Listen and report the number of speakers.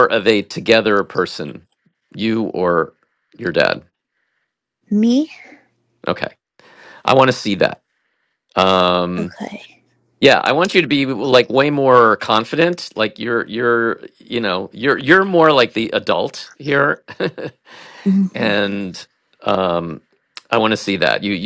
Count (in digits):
2